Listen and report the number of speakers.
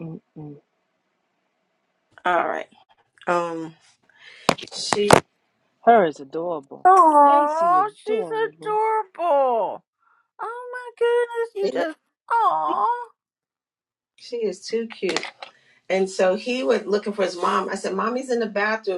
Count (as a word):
three